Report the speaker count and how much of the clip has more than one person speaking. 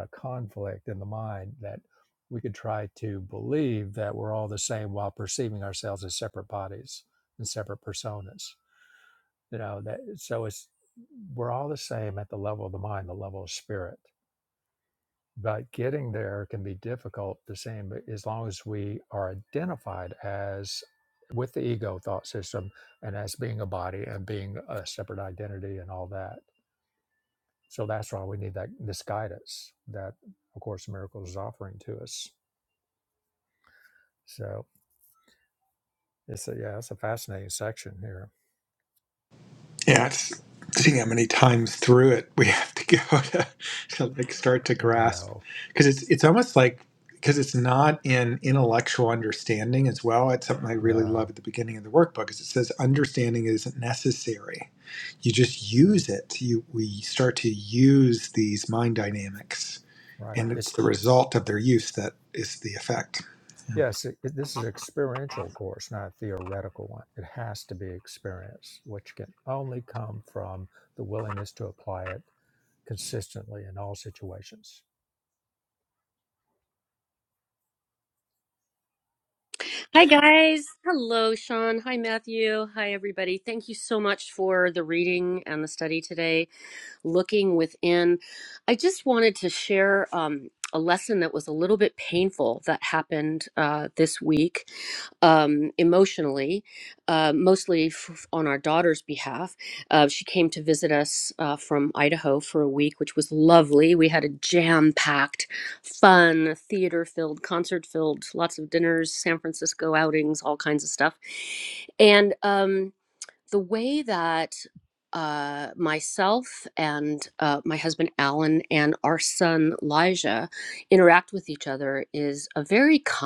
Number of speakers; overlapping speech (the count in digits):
3, about 1%